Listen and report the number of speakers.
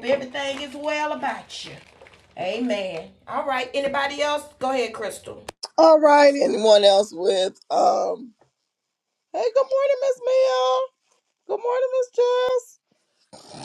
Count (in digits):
2